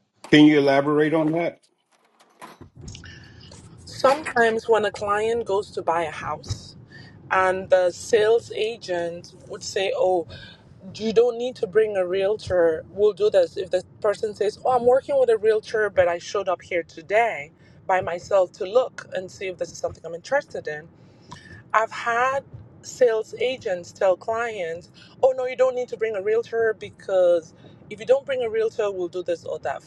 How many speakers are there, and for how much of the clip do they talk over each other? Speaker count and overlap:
2, no overlap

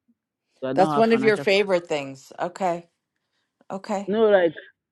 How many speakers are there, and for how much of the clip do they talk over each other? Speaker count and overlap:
2, about 17%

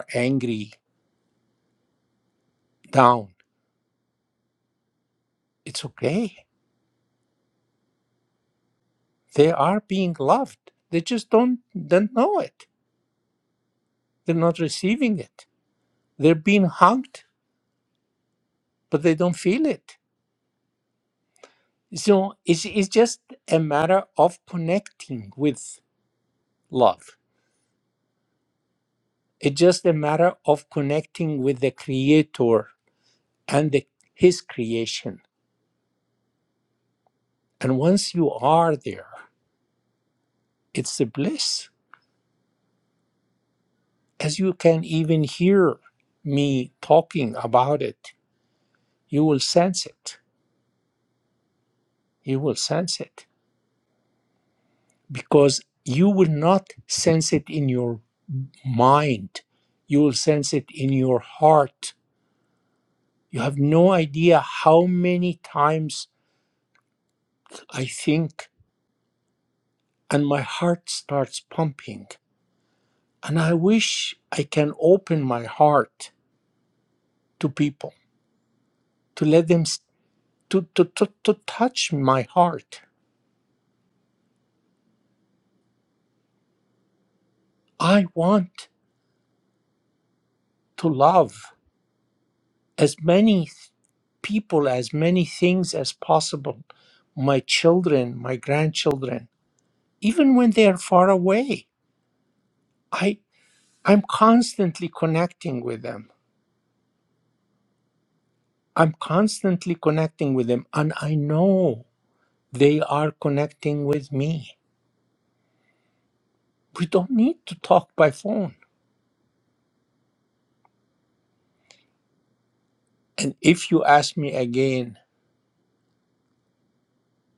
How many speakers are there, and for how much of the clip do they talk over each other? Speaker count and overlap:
1, no overlap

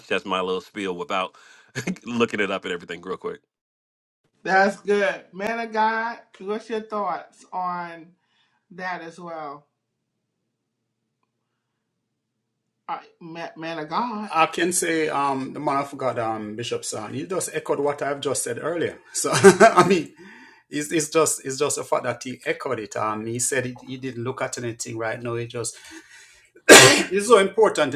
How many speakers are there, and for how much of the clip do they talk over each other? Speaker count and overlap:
3, under 1%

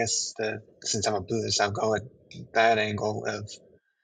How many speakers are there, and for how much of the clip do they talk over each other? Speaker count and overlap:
1, no overlap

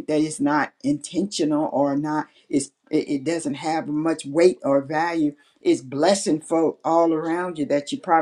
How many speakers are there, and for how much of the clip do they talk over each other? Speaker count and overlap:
1, no overlap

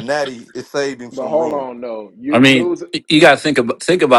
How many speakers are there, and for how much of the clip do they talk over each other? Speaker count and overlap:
3, about 21%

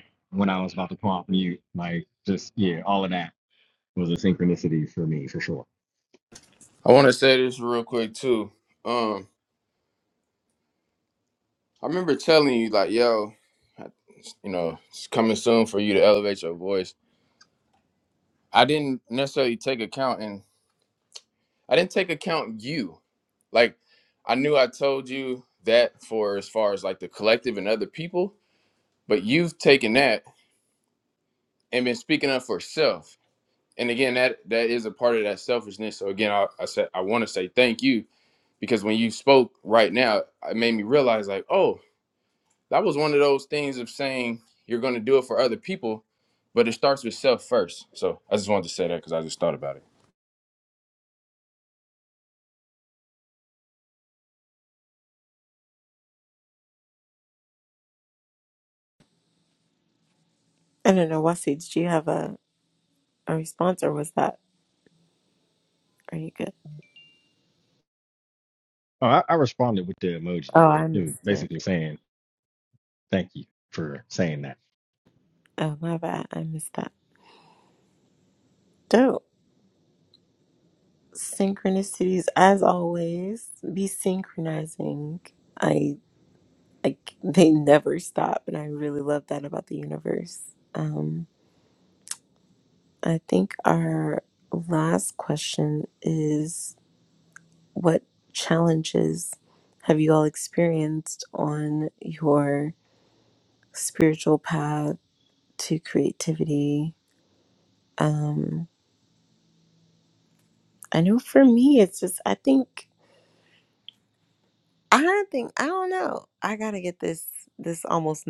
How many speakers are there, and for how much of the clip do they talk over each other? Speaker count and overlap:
3, about 1%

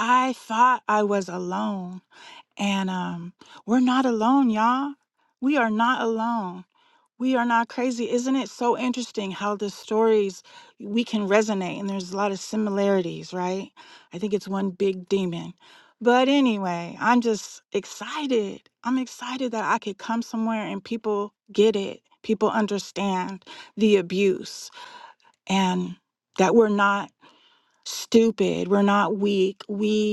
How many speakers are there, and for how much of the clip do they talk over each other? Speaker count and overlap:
1, no overlap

